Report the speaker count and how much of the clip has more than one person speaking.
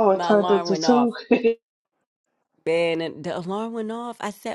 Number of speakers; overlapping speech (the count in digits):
2, about 20%